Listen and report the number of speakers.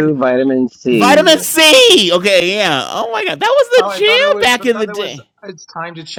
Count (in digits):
3